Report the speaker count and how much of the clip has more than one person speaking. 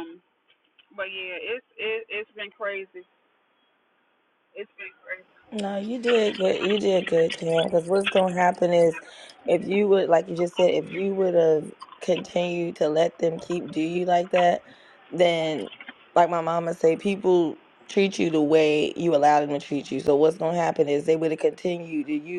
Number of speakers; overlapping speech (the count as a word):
two, no overlap